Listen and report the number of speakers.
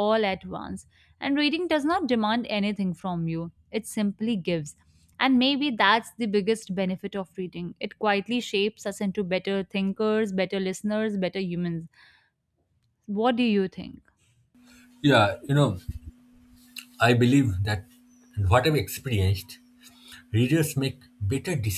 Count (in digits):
2